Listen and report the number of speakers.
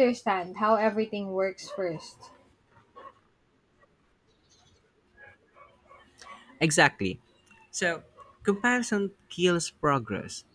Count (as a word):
two